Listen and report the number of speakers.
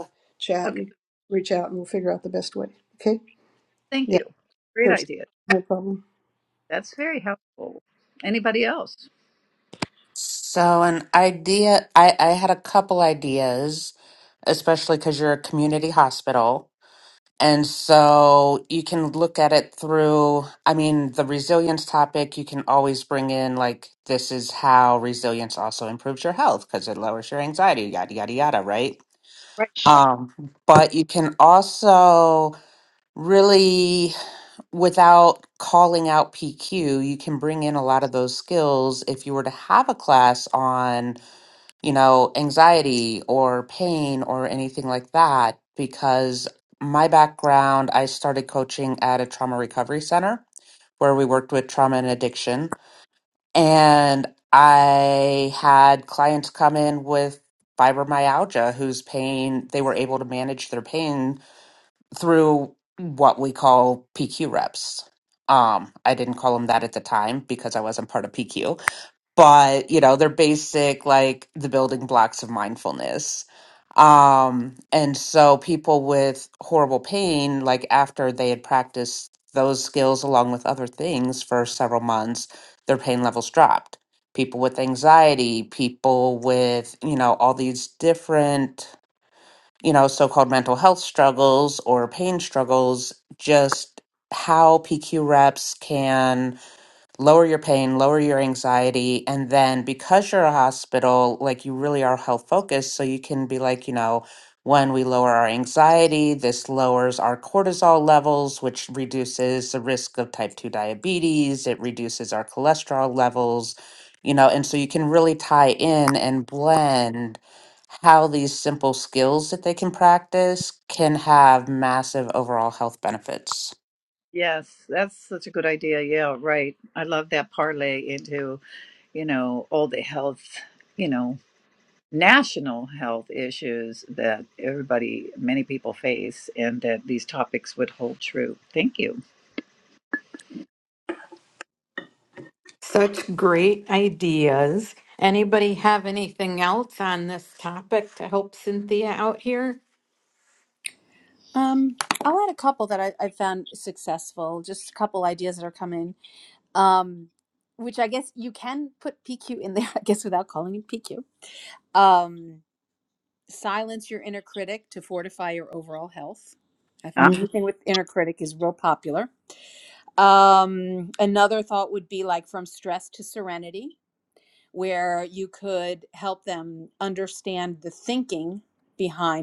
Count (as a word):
five